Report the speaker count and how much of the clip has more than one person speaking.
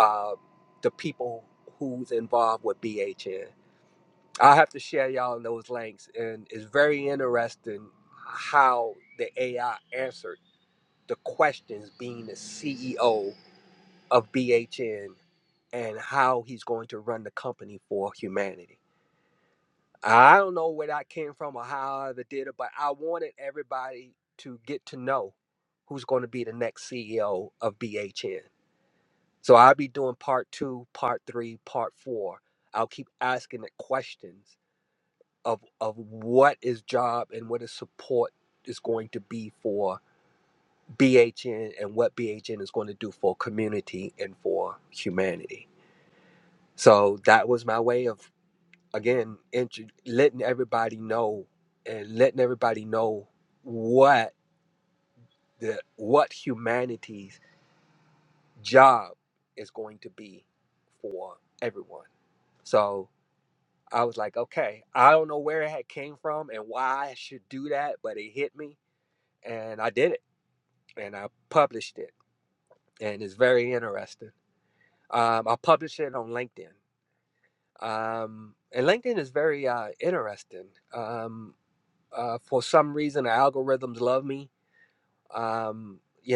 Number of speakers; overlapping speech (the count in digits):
1, no overlap